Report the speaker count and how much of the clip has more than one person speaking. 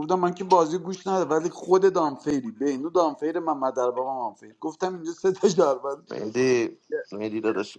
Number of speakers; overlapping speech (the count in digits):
2, no overlap